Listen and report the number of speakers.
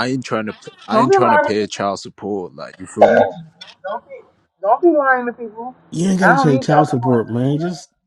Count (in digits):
3